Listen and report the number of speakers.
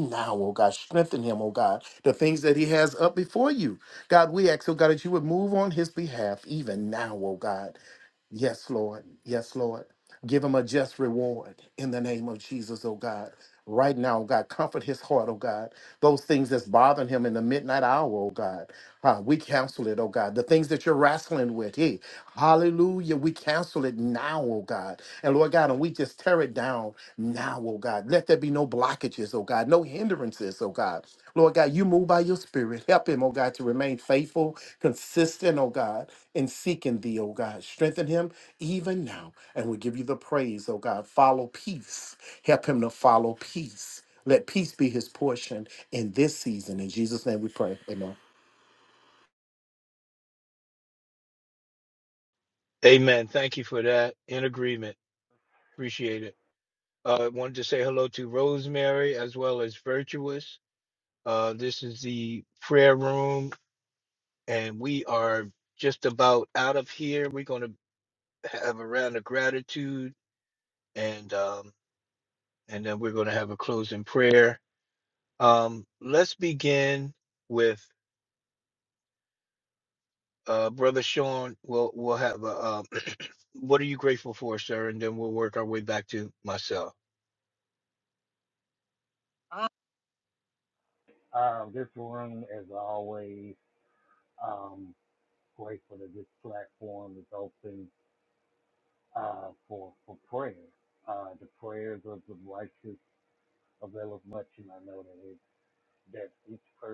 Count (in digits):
3